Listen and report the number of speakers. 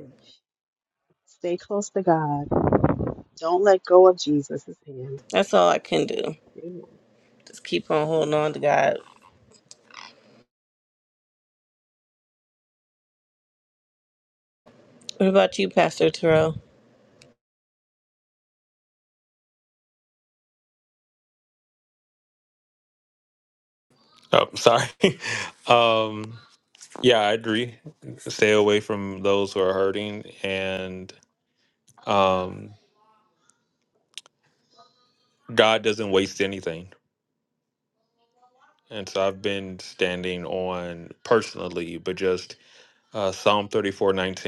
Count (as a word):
three